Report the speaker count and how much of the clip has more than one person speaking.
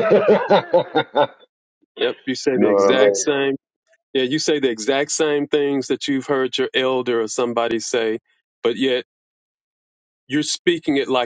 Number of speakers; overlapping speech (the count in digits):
2, about 6%